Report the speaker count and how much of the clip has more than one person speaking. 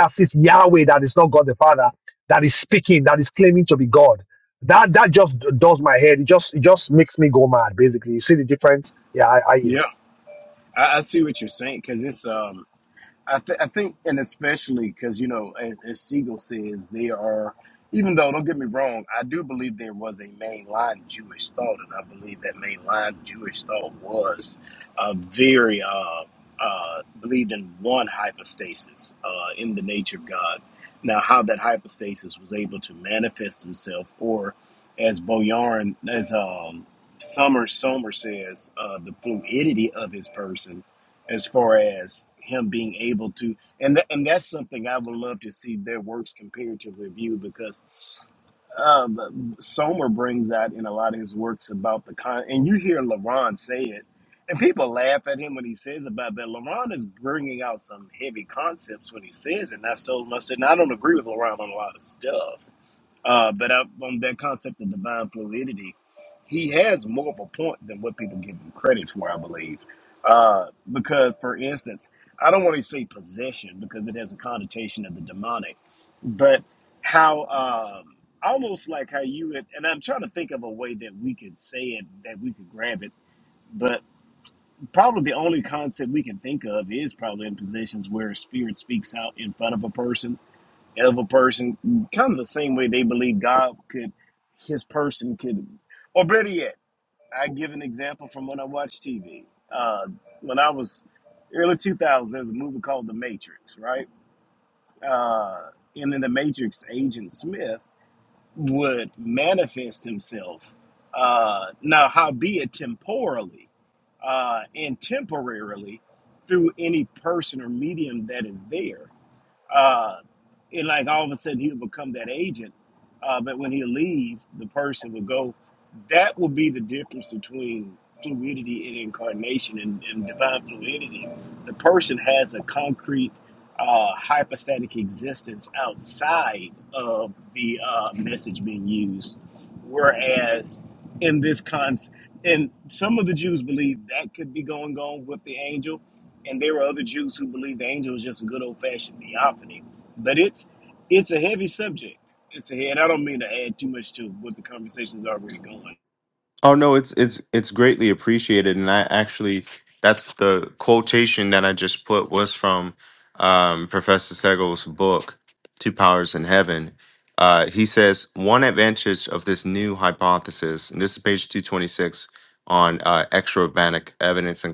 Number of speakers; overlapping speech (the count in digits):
3, under 1%